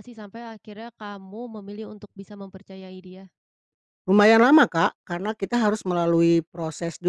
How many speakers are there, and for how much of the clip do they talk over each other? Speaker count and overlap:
2, no overlap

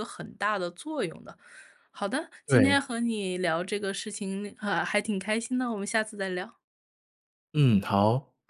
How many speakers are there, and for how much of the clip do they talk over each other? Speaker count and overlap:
2, about 4%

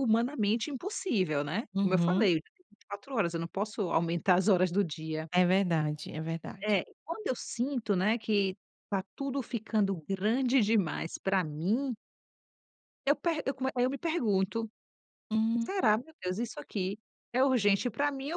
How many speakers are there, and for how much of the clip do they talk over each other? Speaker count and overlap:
2, about 4%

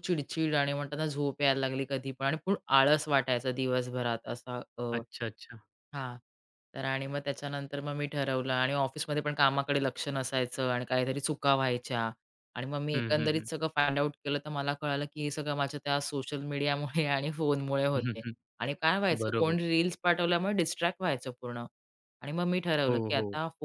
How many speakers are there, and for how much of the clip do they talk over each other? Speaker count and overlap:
2, about 7%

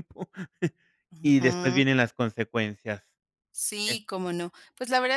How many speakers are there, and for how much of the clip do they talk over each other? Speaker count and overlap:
2, about 13%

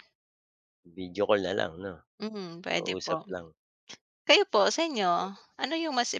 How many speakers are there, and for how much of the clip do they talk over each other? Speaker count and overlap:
2, about 8%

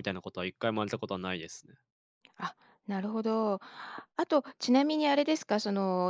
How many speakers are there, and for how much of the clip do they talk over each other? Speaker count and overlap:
2, no overlap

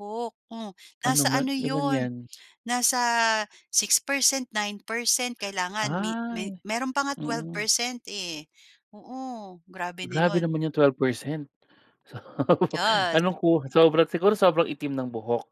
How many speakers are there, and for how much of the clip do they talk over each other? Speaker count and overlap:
2, about 18%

